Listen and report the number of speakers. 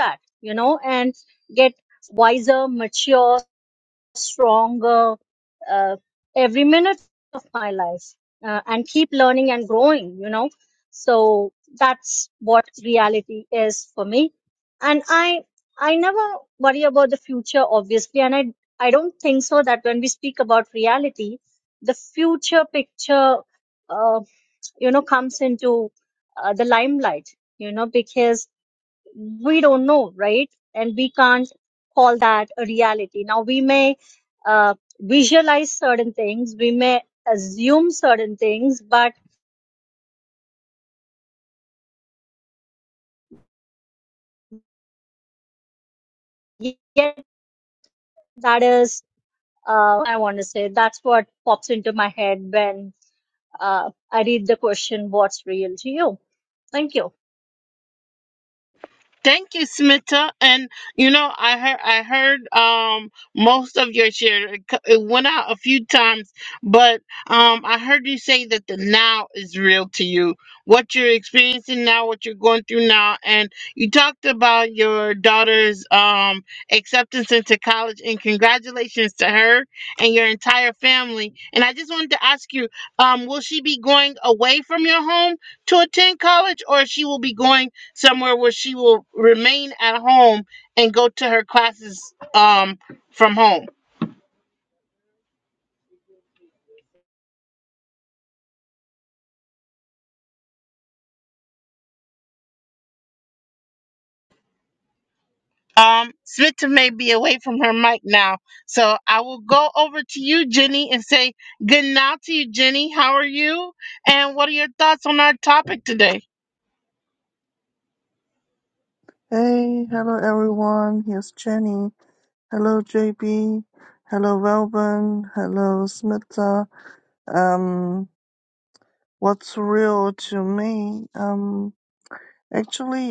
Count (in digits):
3